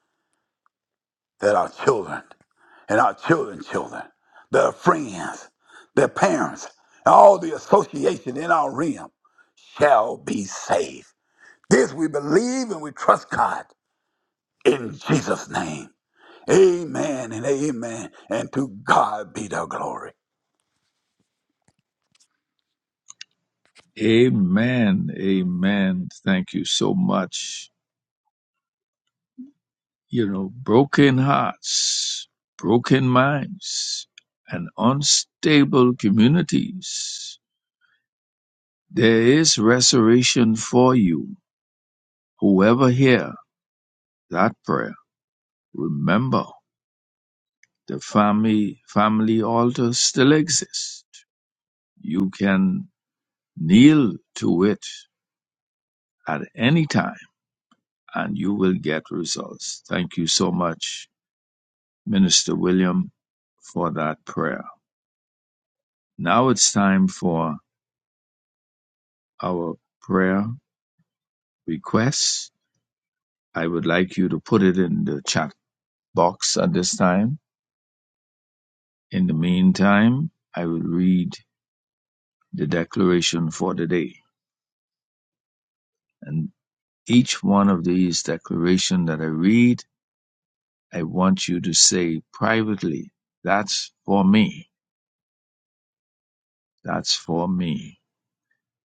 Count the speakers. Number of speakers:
2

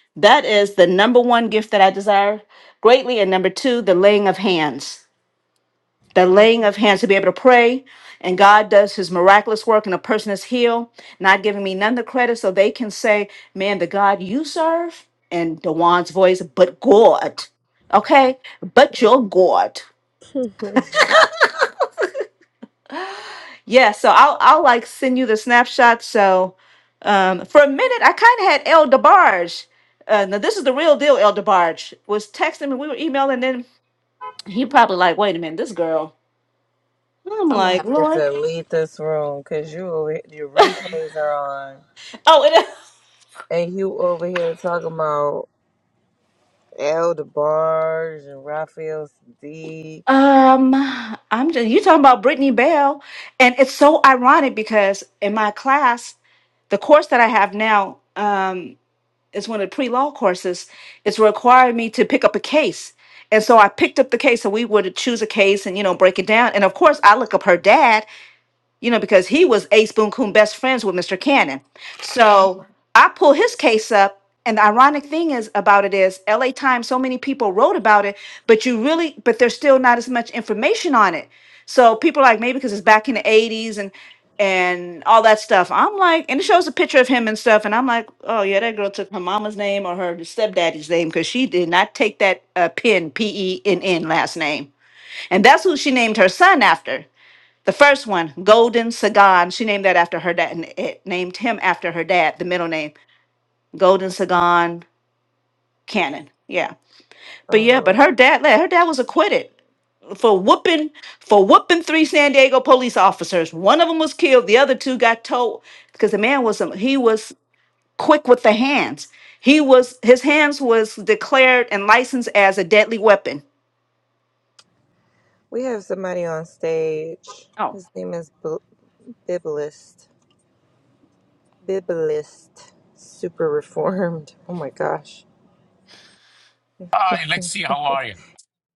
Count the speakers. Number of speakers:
3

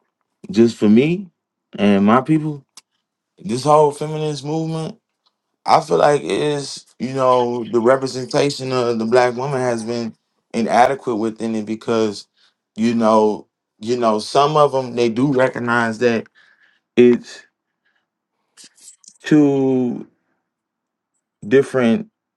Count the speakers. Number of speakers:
1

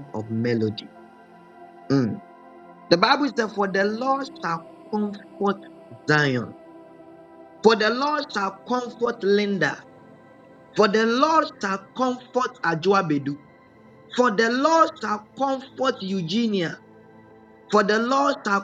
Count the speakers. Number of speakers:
1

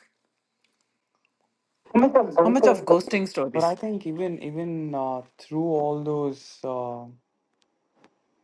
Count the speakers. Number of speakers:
2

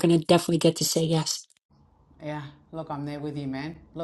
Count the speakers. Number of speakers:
2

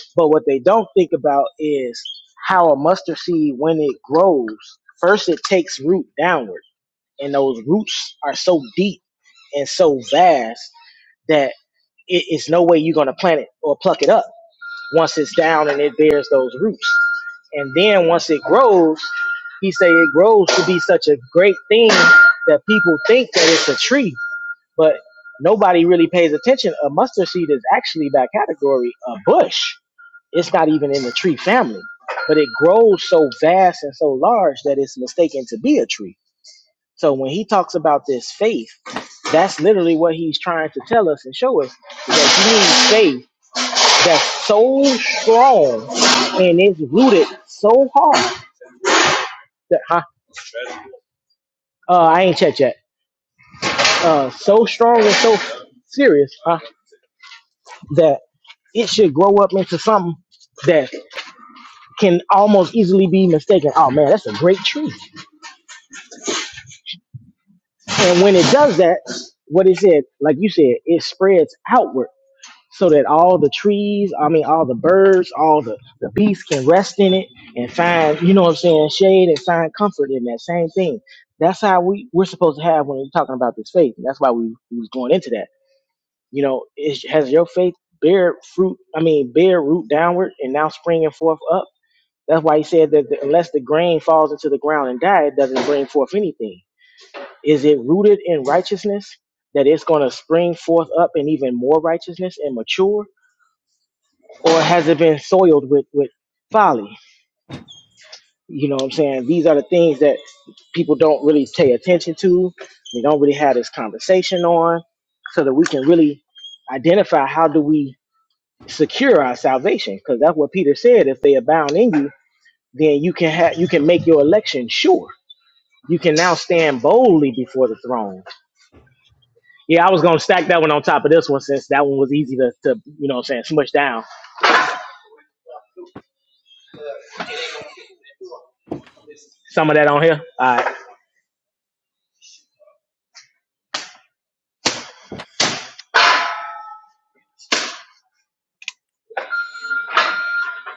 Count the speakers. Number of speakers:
1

